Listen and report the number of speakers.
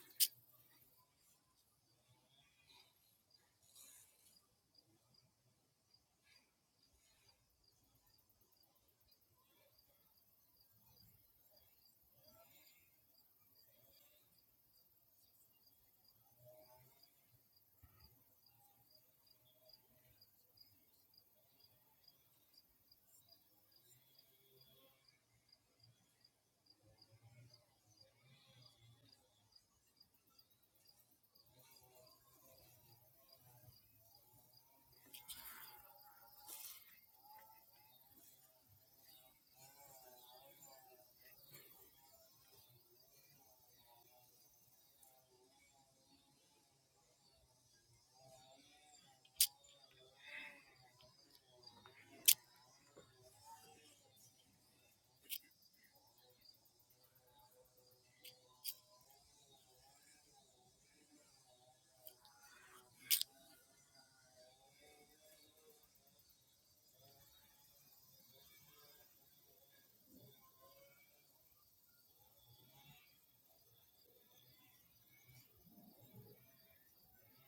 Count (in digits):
0